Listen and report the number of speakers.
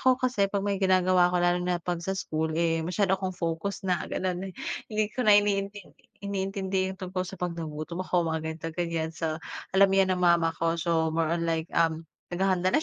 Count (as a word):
one